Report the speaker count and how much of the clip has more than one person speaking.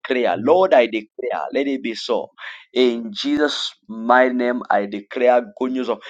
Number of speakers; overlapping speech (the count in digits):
1, no overlap